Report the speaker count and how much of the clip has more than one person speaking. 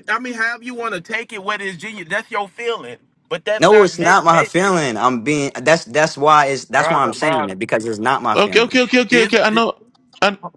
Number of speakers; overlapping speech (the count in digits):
3, about 24%